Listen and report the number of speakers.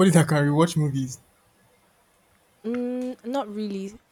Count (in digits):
2